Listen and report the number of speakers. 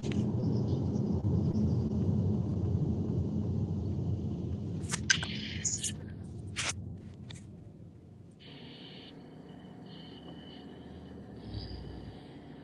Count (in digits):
0